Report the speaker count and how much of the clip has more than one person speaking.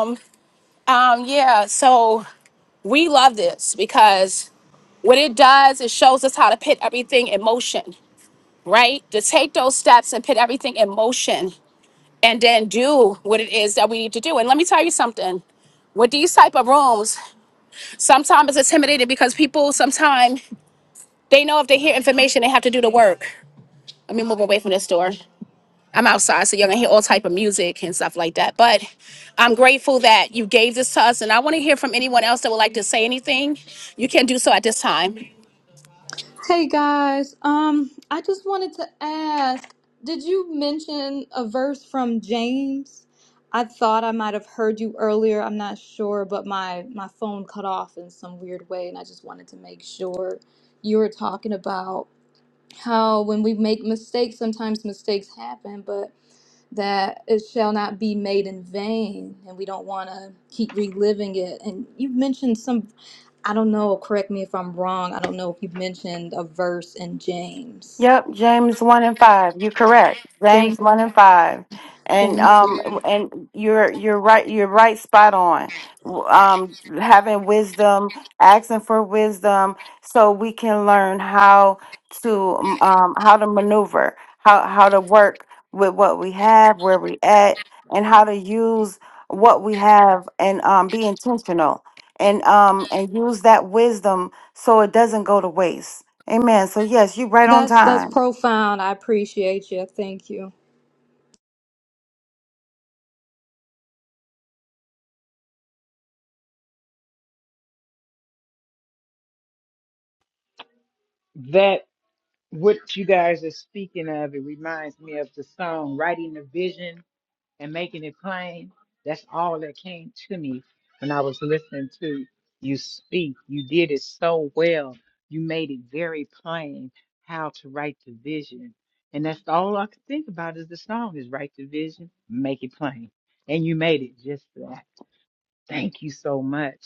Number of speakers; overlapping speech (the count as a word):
four, about 1%